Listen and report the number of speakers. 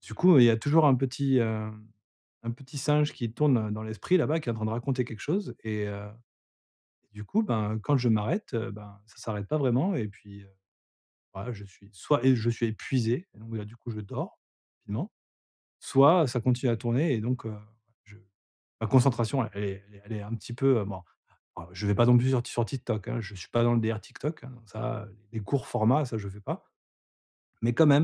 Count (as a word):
one